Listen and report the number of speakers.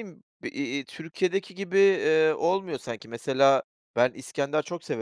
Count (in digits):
1